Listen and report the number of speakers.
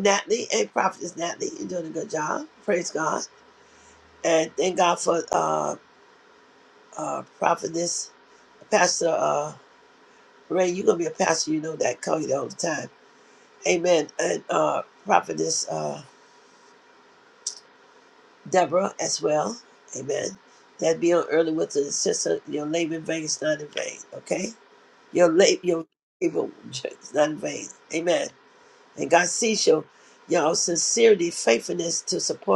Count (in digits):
1